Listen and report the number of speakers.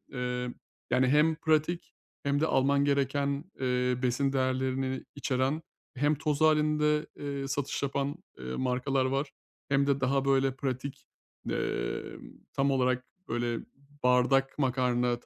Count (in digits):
1